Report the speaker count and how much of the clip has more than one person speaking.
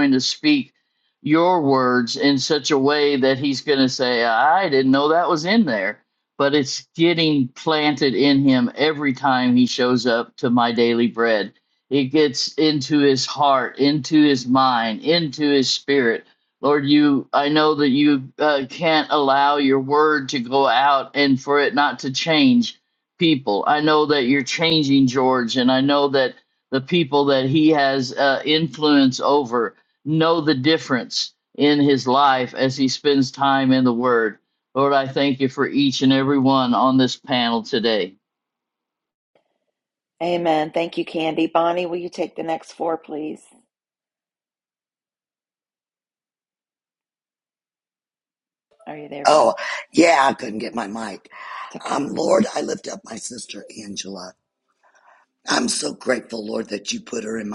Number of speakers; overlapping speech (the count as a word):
three, about 1%